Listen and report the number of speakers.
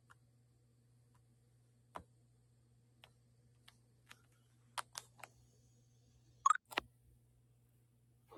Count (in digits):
0